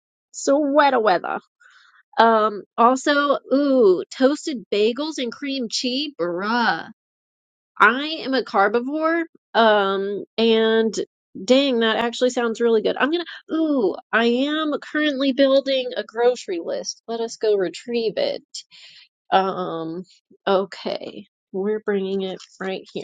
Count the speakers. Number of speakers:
1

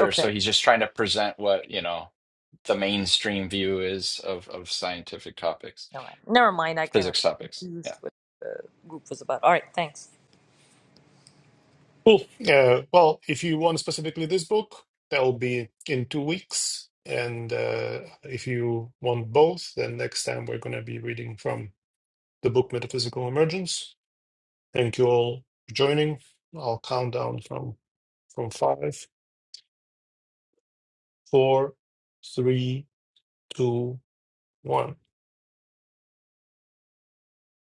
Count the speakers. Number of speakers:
3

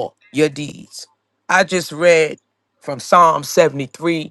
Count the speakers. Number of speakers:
1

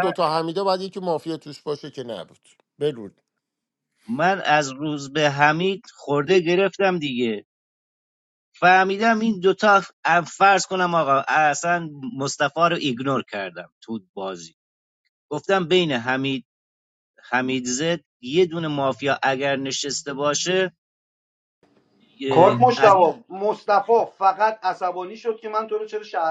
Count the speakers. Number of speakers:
3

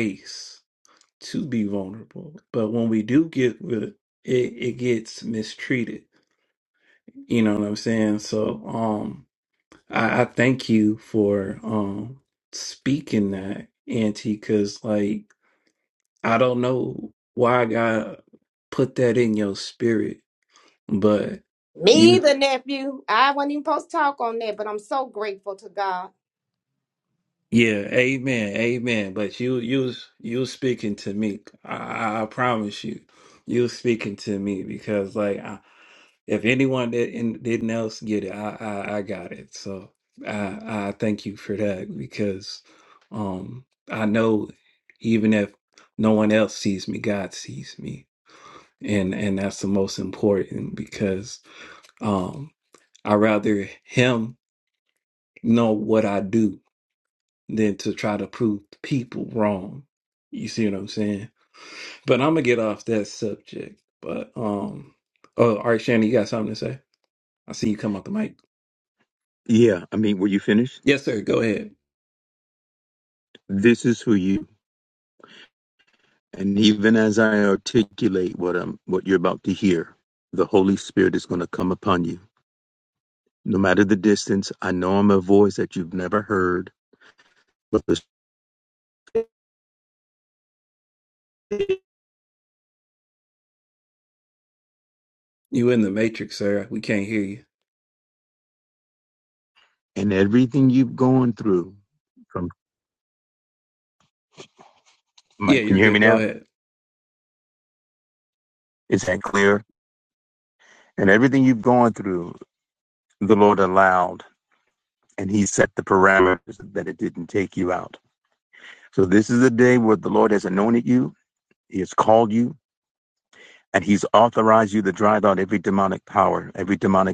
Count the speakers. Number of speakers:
3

